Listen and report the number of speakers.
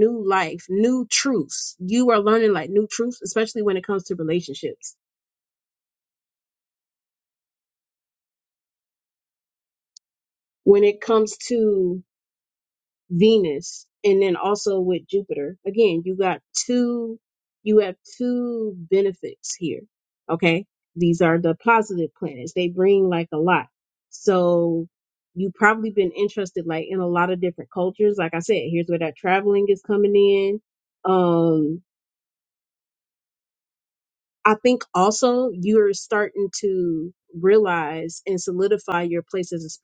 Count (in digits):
1